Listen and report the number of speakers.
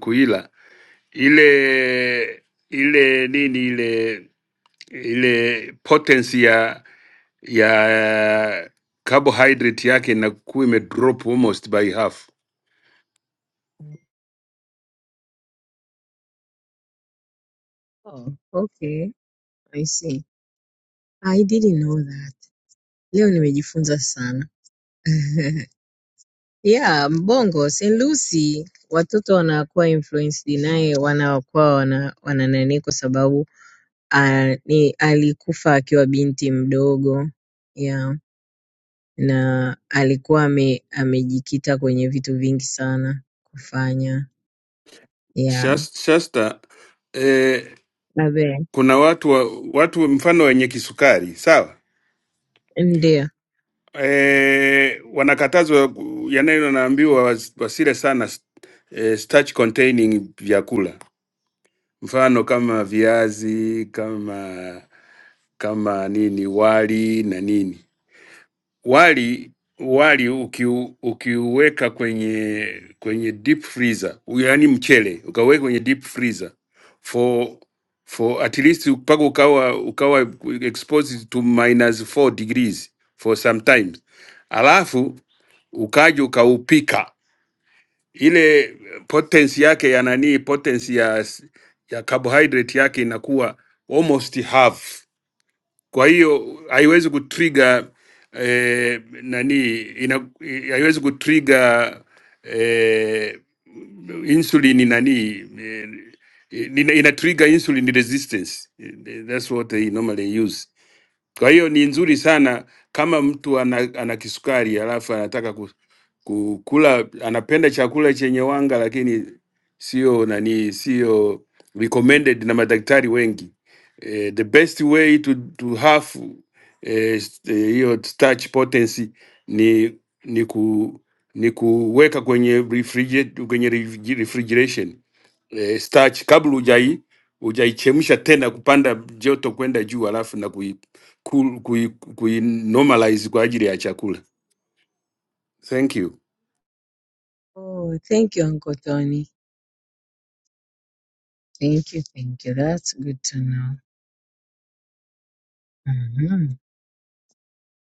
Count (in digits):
2